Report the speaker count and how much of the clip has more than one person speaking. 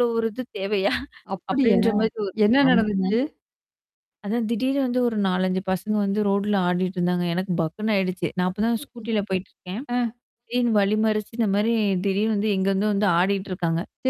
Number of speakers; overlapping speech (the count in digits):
2, about 12%